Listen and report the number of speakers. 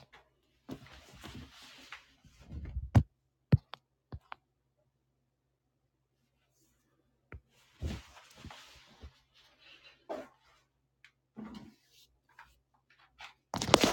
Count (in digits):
0